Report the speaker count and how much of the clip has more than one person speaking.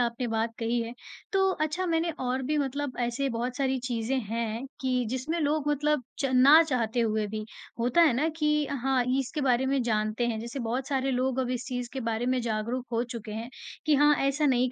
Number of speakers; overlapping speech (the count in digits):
1, no overlap